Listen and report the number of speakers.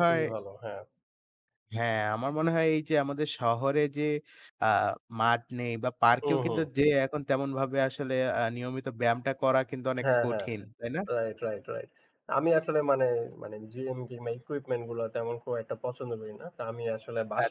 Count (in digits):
2